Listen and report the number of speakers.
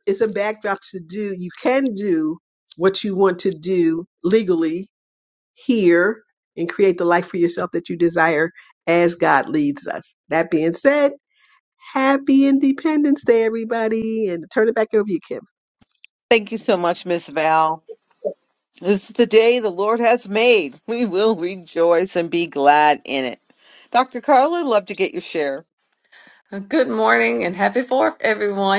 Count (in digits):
3